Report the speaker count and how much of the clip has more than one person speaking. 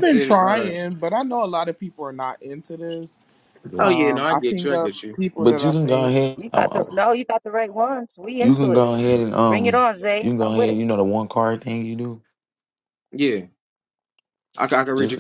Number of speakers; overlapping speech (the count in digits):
4, about 32%